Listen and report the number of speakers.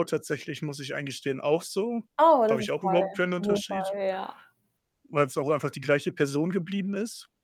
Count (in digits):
2